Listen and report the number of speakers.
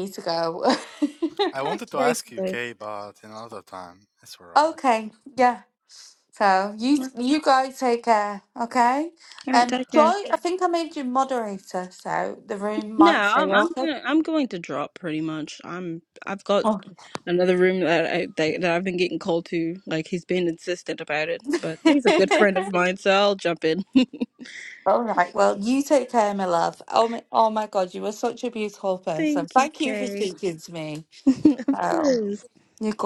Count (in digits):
3